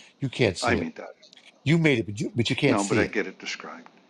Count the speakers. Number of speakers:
two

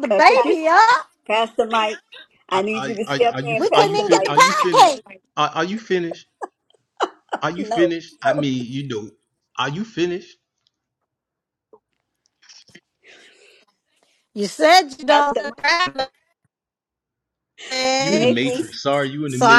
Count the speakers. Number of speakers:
three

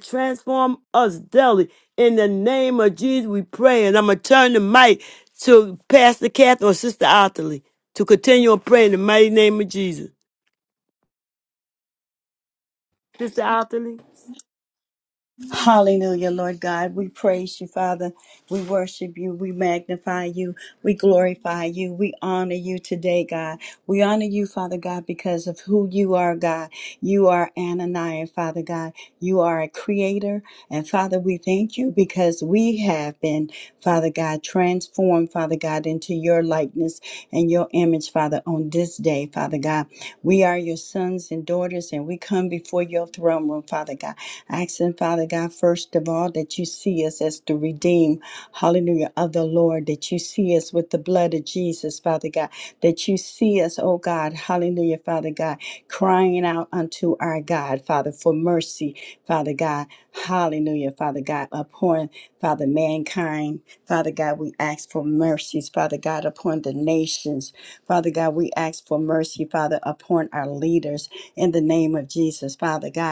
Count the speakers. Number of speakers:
two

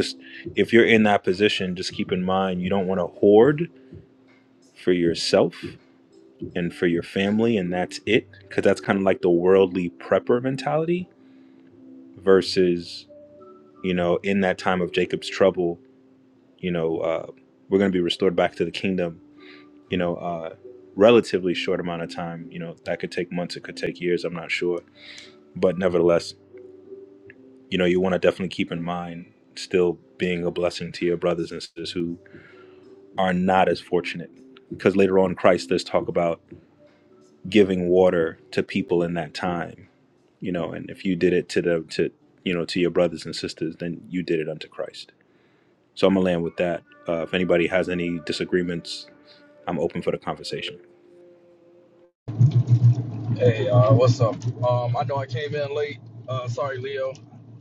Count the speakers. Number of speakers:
two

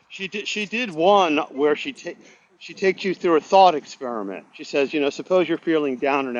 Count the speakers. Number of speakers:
one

